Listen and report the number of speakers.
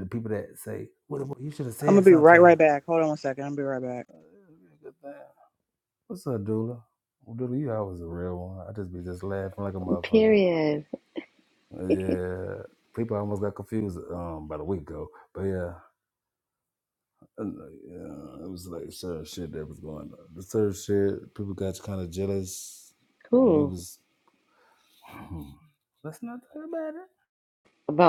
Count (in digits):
3